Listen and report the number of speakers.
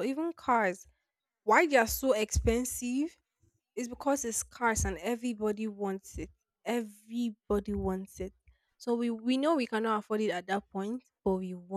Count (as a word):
one